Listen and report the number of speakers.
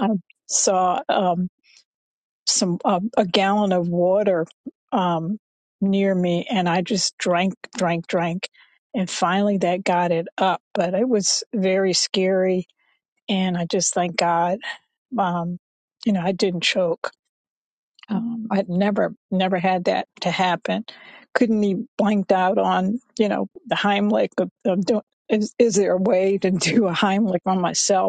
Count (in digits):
1